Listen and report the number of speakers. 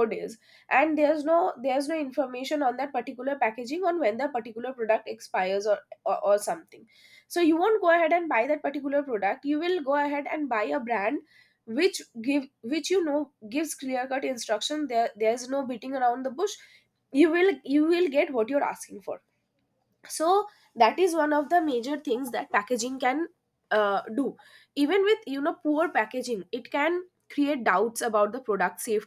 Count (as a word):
one